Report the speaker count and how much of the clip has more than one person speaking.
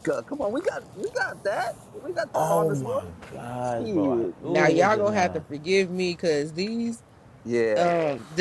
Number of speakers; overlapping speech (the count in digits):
3, about 29%